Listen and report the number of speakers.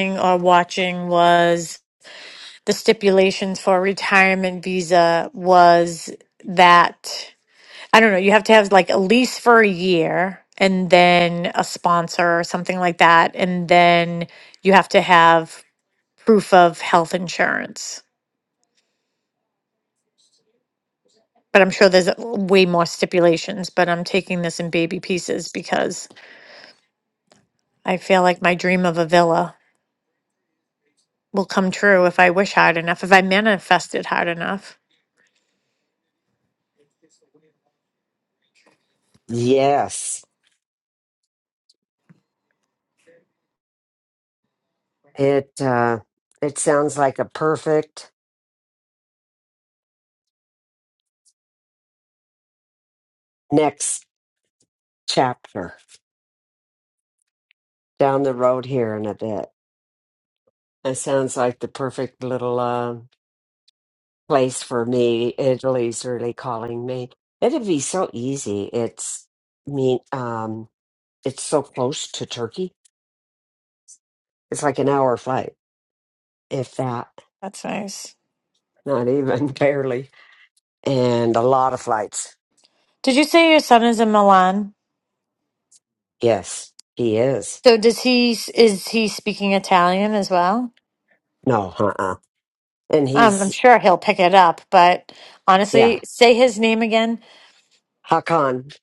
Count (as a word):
two